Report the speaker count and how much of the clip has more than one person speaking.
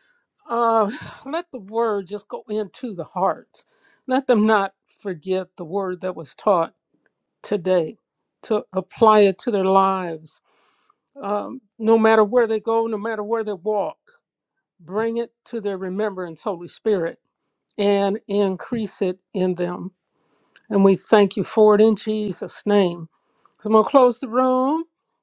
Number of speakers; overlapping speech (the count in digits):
1, no overlap